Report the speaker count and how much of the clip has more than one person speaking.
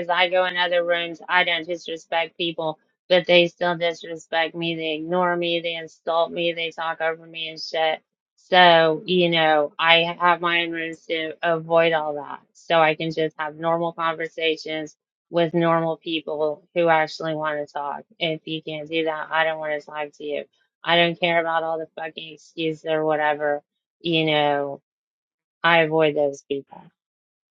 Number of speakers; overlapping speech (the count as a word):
one, no overlap